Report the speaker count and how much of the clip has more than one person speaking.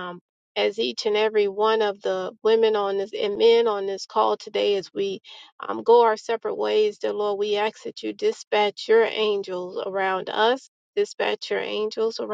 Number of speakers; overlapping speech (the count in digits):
1, no overlap